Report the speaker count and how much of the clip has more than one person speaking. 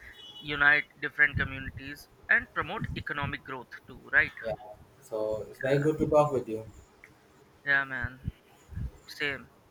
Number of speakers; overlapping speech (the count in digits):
2, no overlap